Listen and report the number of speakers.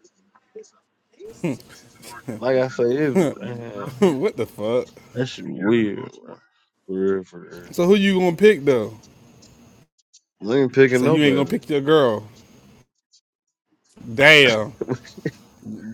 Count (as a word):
two